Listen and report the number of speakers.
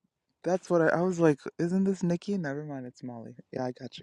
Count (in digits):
1